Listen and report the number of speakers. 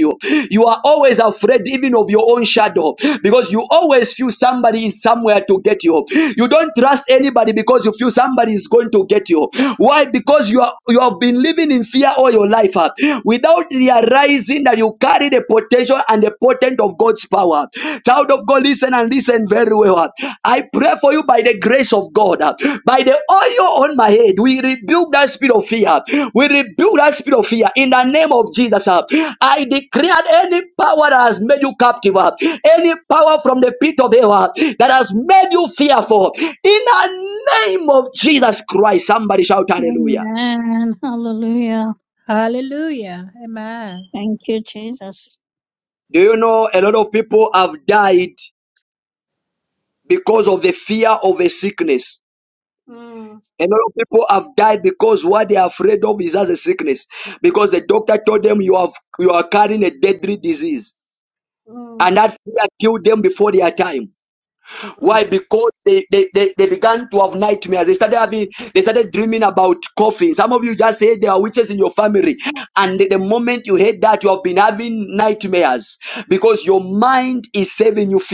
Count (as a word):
three